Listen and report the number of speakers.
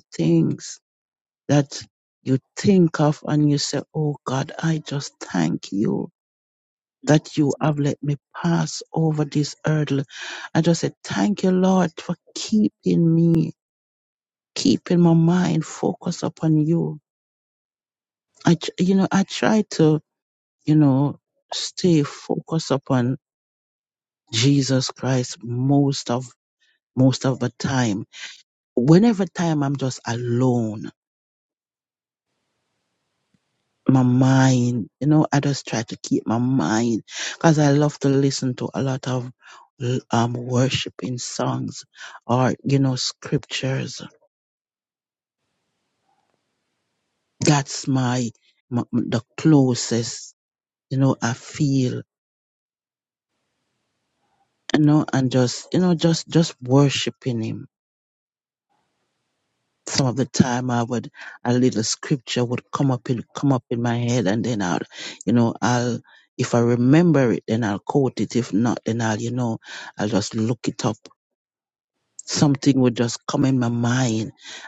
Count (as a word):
one